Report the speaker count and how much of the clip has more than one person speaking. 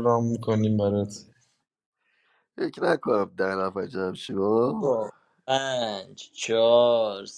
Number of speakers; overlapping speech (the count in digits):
3, no overlap